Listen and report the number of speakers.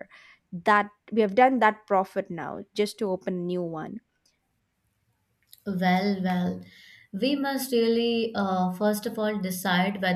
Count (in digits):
2